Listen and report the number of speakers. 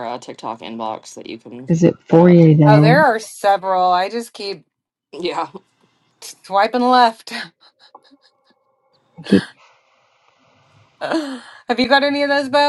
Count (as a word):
three